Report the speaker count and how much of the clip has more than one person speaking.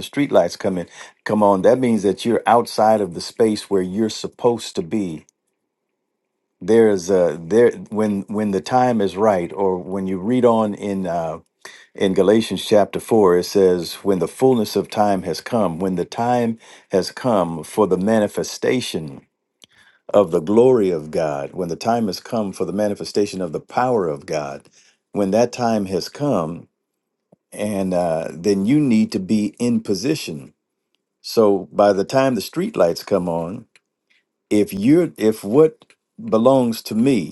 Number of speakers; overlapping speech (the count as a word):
one, no overlap